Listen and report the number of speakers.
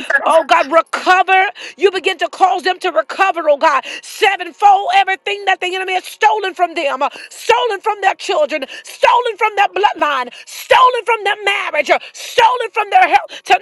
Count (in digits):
1